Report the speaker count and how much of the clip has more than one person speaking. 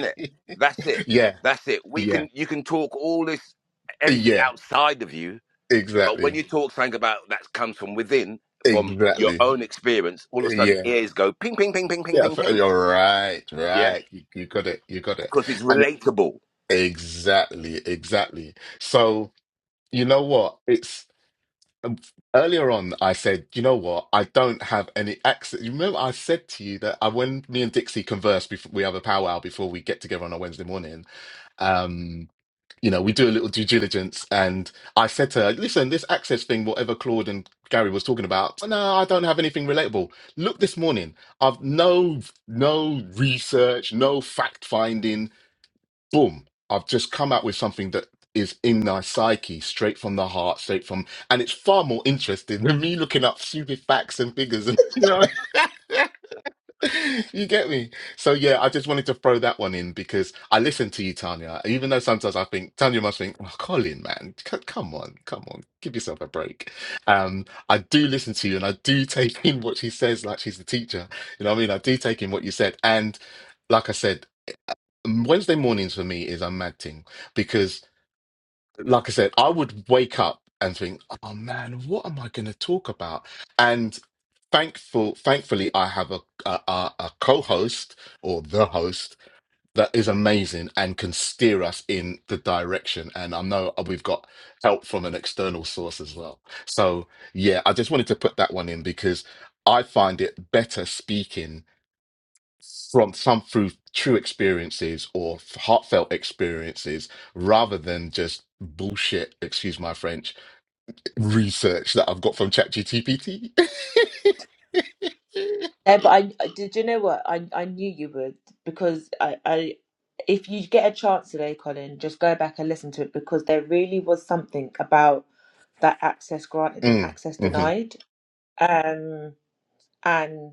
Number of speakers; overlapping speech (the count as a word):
three, about 4%